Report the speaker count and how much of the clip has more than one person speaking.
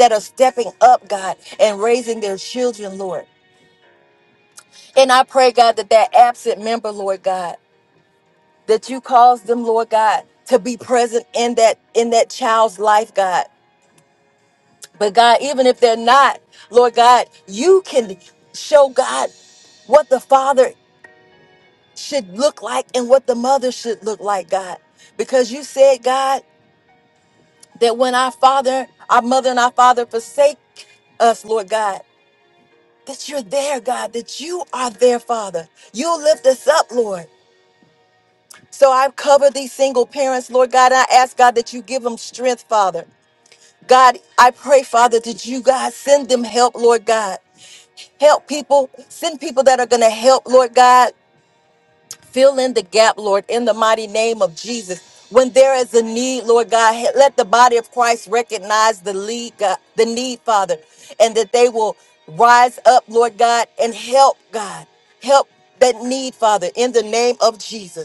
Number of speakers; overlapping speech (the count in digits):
1, no overlap